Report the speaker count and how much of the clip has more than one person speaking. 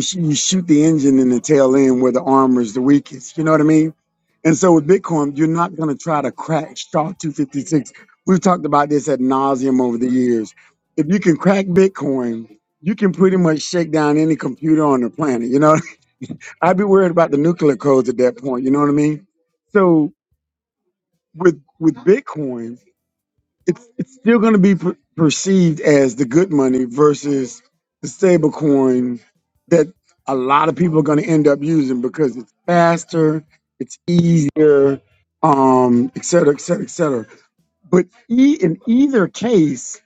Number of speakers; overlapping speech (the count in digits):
1, no overlap